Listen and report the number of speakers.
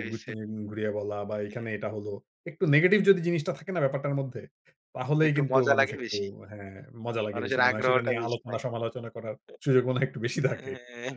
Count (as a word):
two